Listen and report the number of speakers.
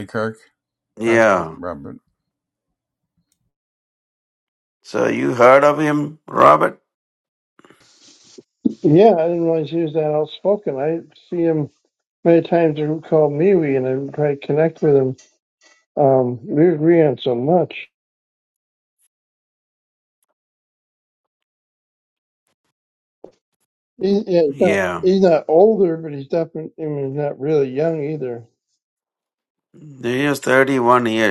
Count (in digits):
3